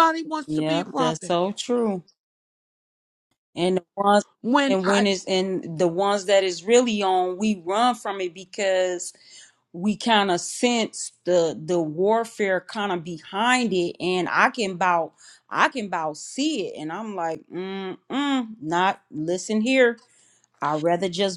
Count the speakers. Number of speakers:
2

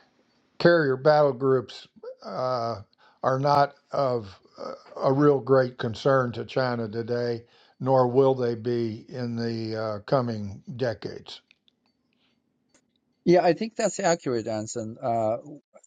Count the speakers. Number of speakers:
2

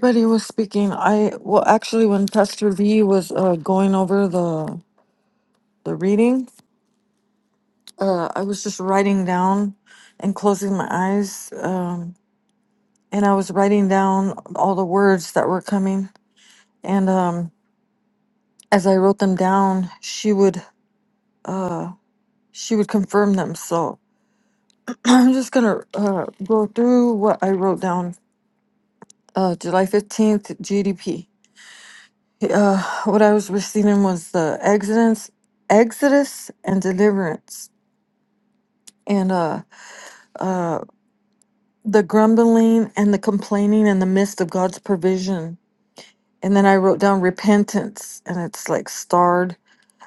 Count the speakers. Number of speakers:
1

